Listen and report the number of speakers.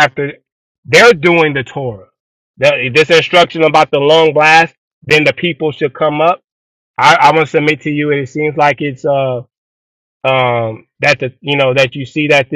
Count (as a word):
one